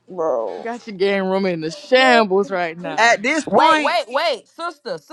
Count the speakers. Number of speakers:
3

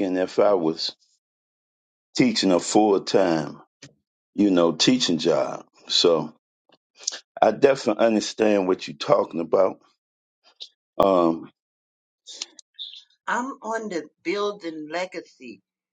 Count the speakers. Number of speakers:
2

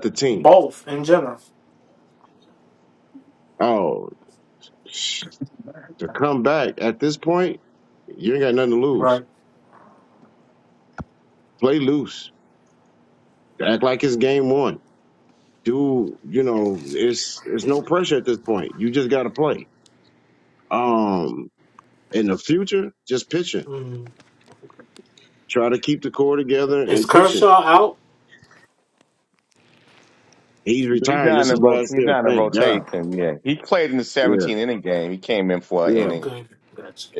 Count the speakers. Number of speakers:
3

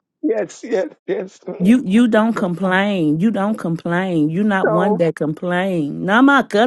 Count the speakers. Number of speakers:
2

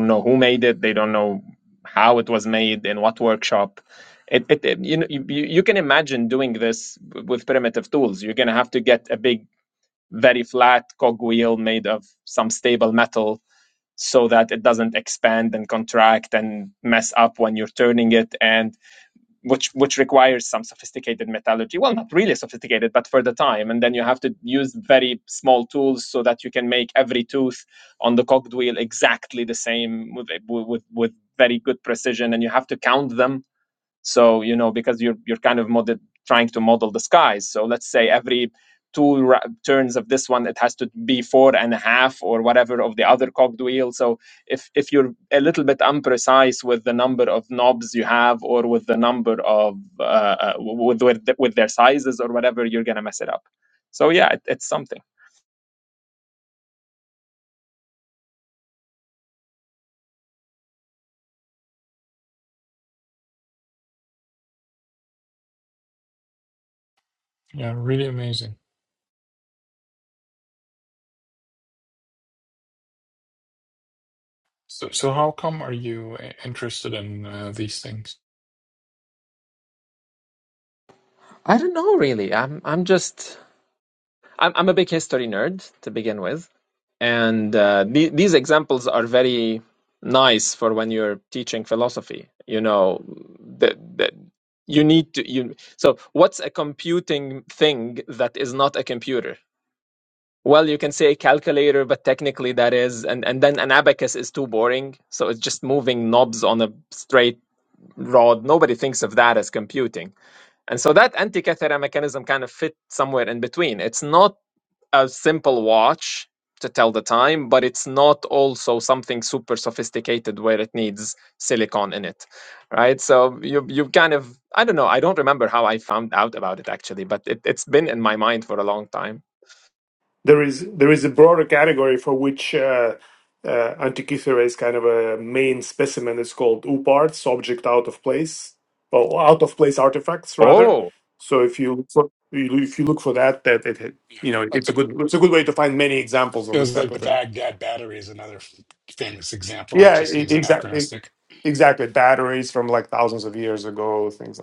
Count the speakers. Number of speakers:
4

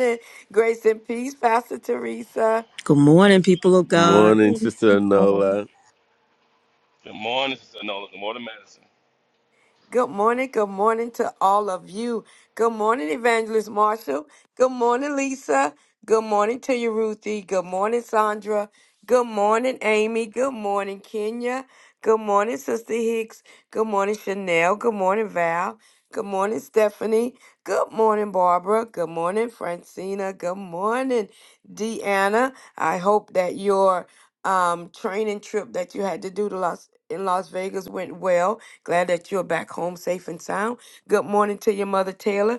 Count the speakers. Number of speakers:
4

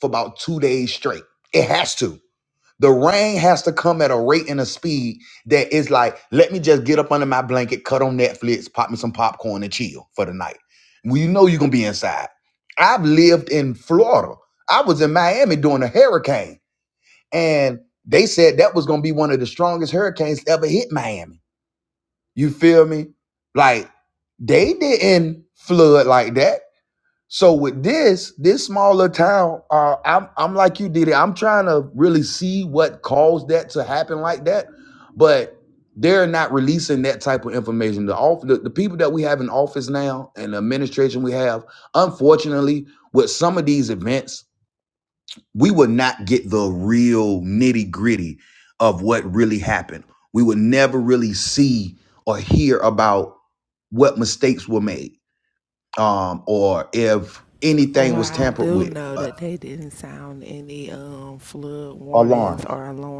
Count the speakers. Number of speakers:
2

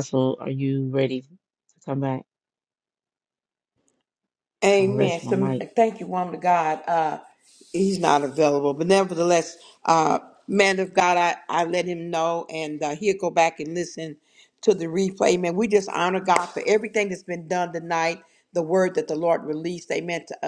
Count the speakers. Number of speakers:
2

